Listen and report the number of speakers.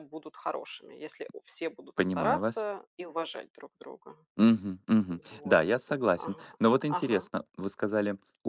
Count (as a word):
two